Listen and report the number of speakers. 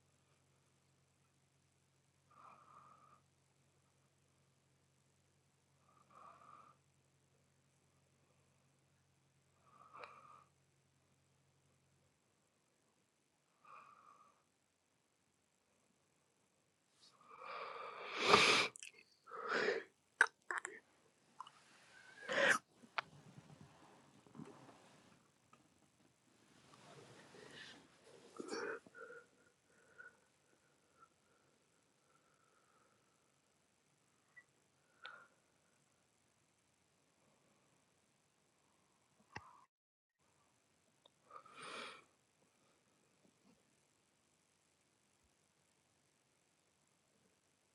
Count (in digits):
0